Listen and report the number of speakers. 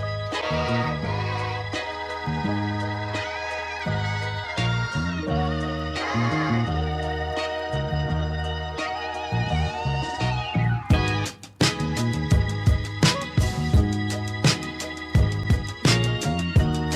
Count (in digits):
0